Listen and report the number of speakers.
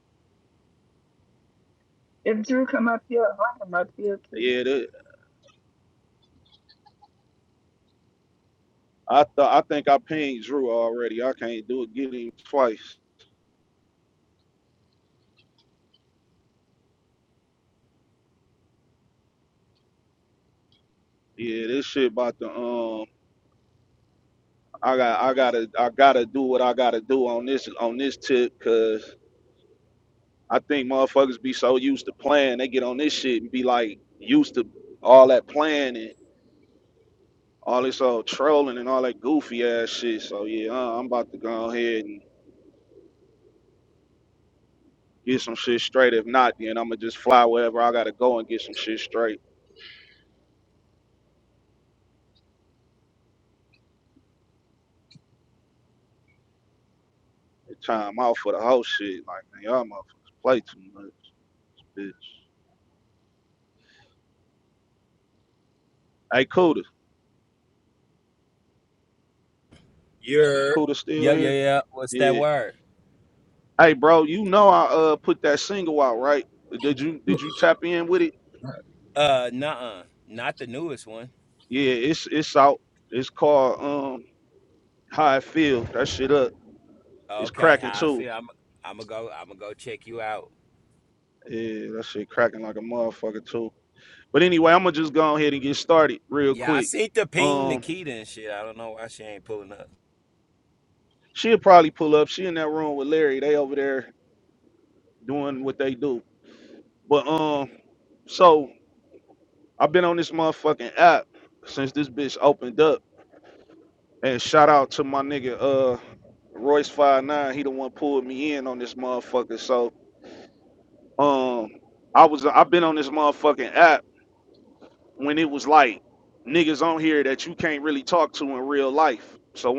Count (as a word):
three